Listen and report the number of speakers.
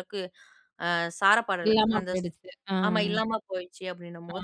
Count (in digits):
2